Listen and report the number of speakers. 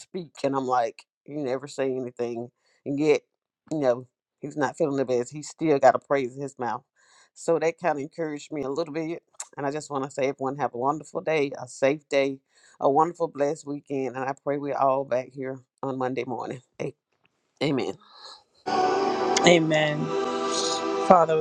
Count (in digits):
2